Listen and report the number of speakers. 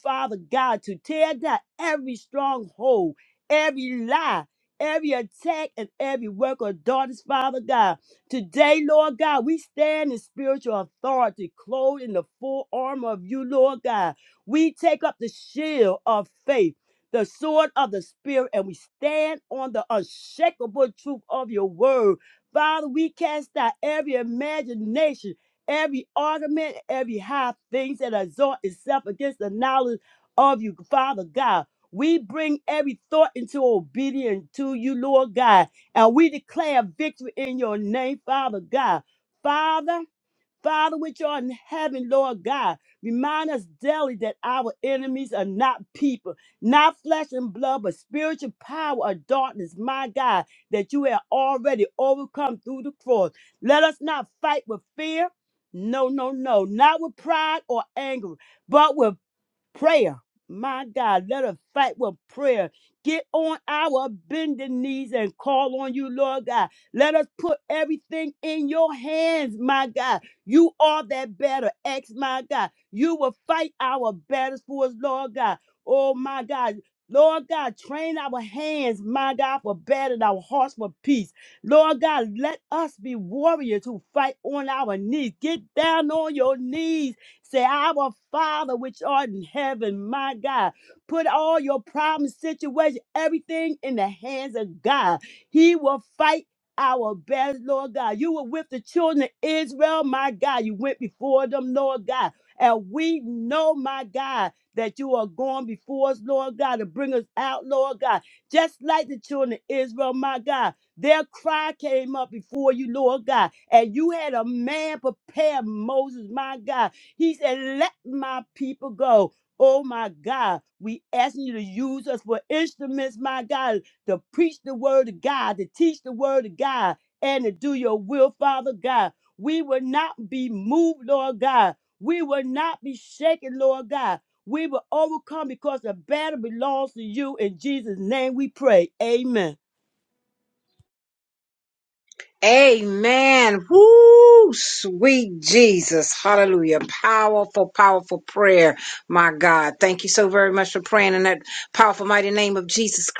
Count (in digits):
2